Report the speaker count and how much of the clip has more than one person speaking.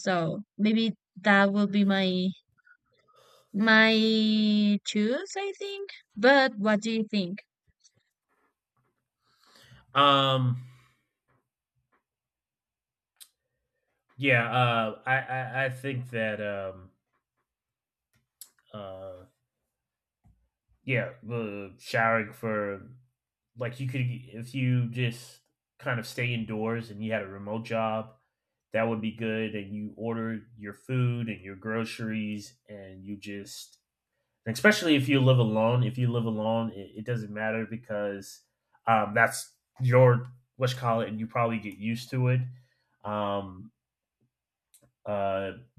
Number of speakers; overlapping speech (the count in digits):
2, no overlap